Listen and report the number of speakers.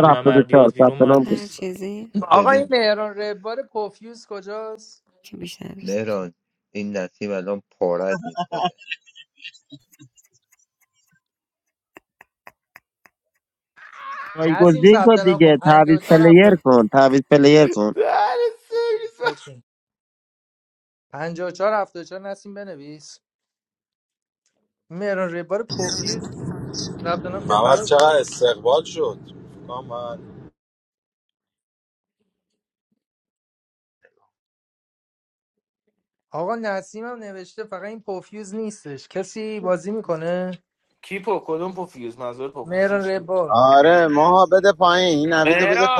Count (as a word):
seven